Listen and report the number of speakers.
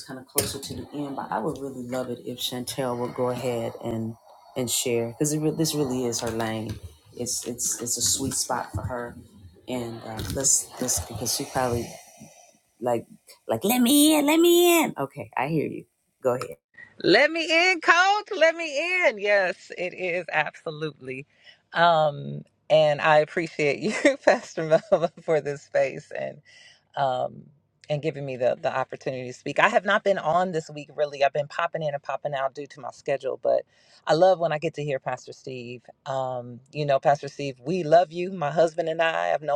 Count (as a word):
two